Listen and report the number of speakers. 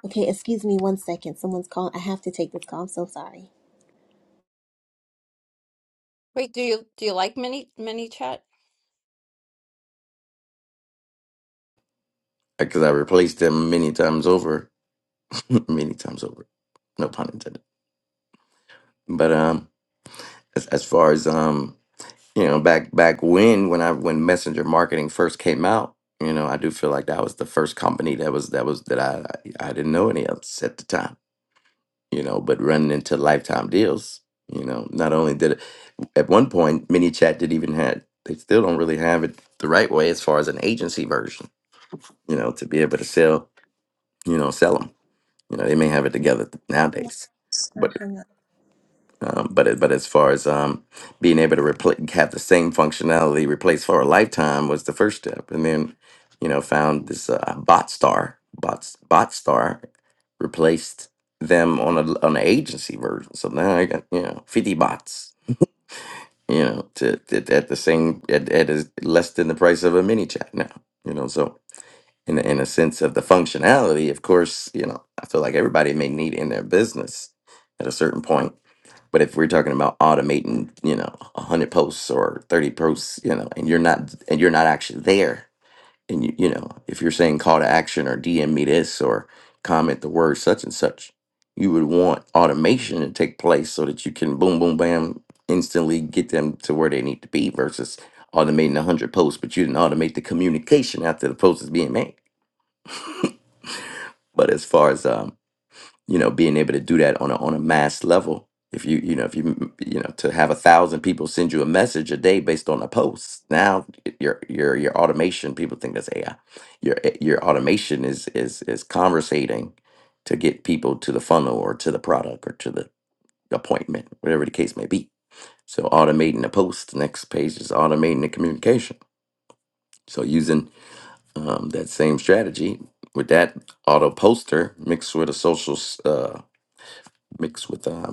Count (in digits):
3